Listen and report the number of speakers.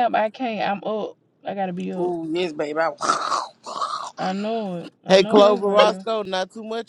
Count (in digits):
3